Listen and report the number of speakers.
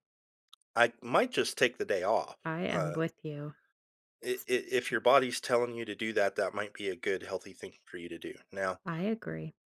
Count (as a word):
two